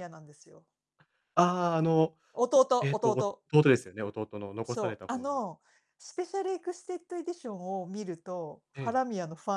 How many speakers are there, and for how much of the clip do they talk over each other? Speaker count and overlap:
two, about 10%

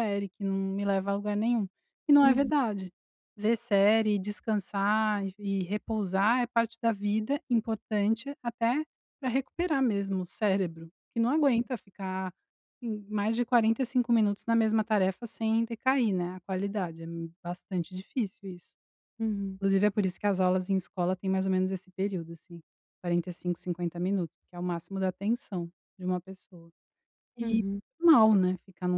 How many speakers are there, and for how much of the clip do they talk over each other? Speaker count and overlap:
two, about 2%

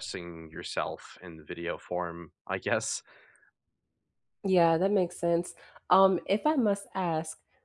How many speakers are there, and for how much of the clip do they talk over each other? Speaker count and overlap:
two, no overlap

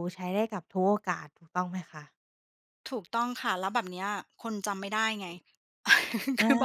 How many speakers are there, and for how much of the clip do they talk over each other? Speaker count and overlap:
two, about 2%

